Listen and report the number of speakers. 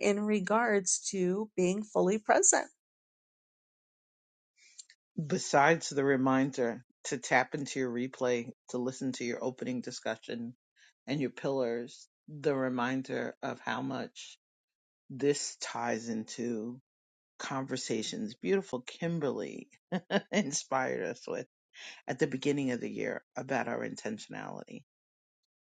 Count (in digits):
2